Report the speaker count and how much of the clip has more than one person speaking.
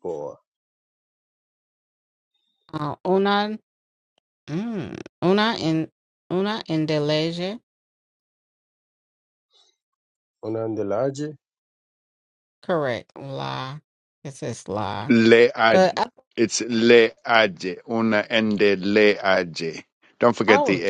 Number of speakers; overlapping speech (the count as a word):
three, about 2%